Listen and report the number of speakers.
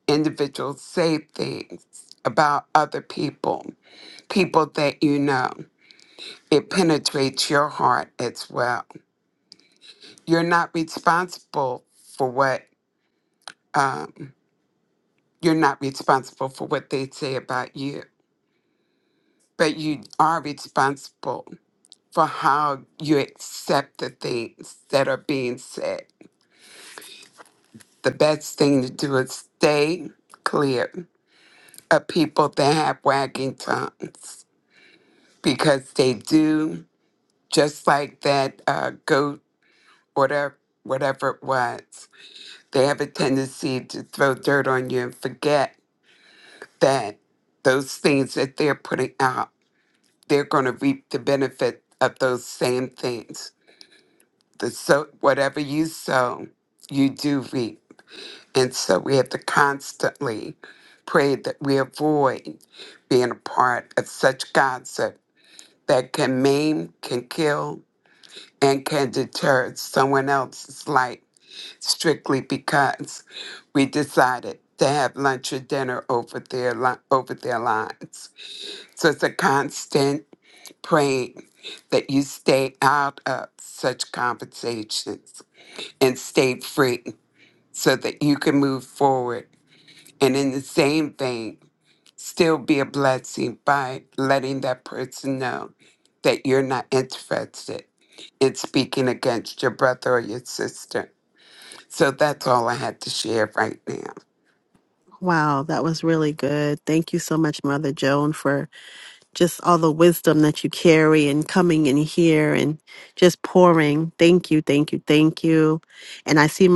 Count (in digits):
2